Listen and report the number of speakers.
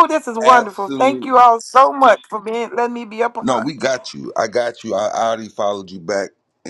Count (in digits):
2